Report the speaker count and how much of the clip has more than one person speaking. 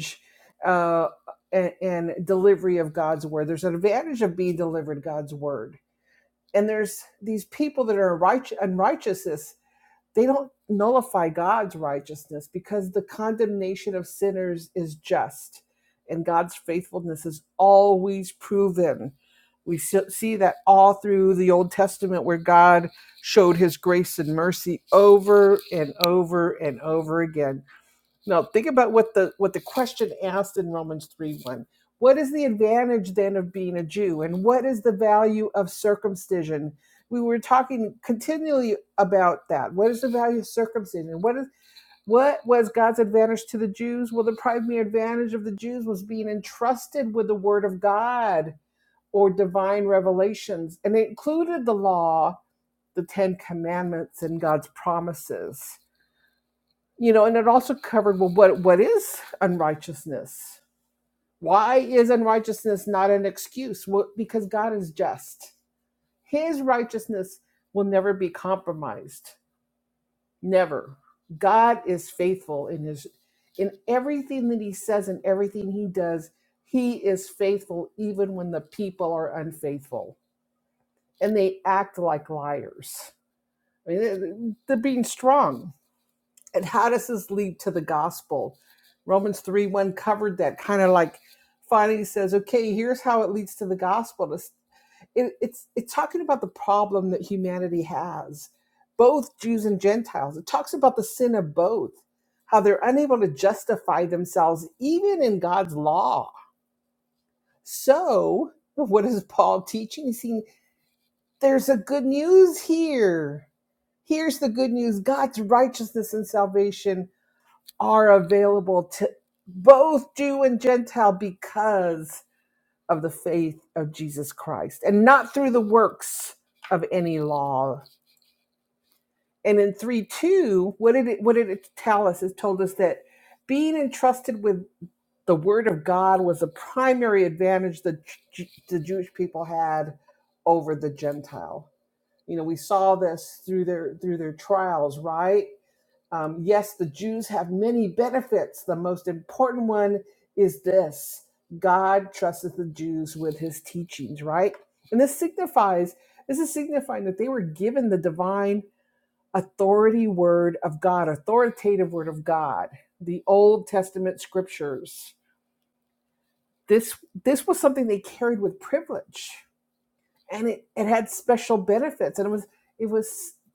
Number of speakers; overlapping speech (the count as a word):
one, no overlap